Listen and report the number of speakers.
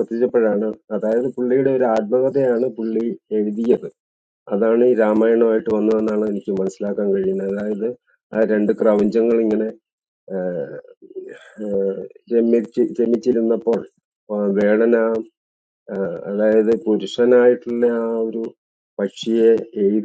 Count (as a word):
one